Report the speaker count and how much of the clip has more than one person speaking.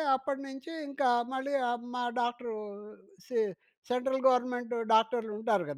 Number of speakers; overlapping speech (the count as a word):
one, no overlap